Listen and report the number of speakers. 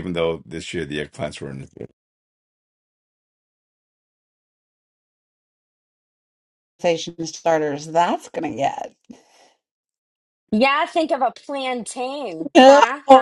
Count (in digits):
3